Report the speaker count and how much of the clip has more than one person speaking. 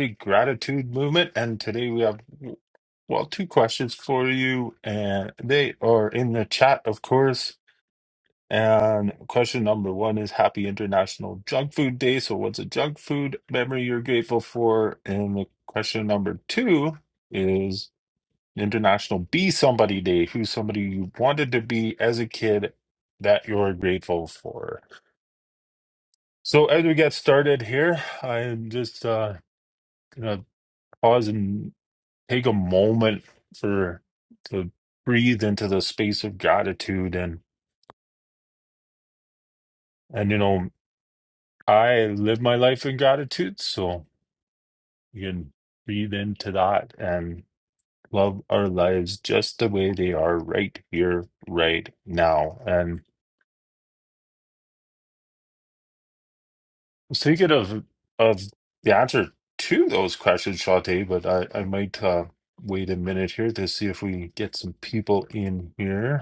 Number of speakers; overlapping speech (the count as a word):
one, no overlap